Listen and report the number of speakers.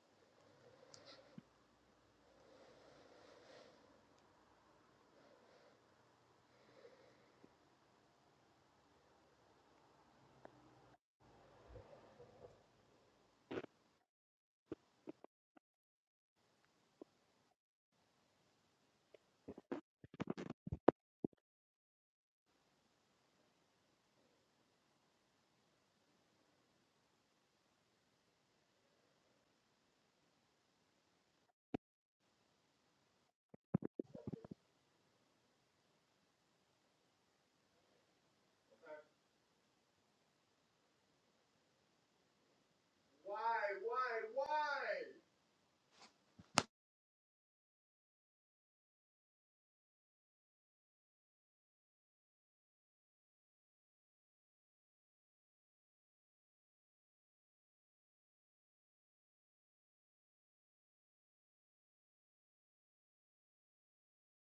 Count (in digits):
0